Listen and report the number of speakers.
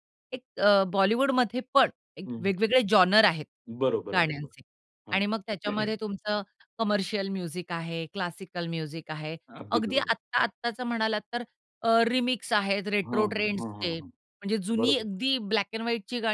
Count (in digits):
2